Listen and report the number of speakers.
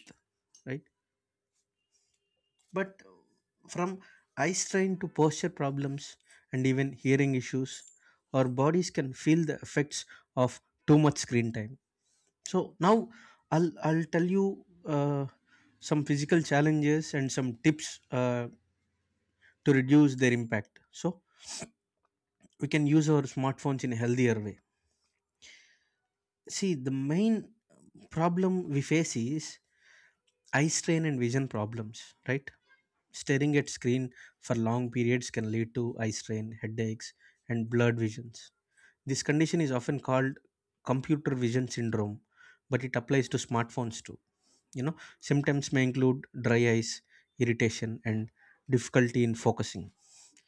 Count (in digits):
1